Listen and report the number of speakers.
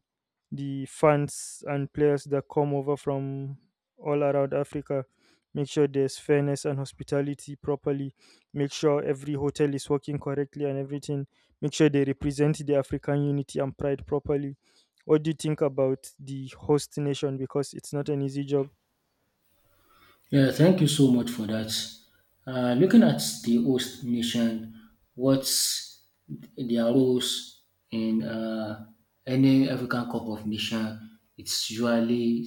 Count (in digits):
2